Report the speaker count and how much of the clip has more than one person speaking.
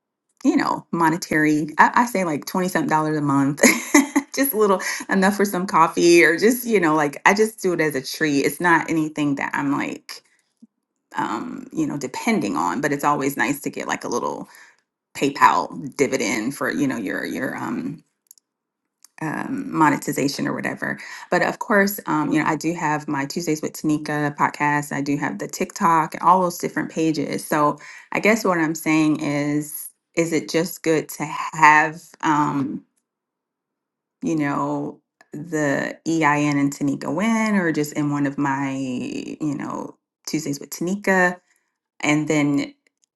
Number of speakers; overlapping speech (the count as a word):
one, no overlap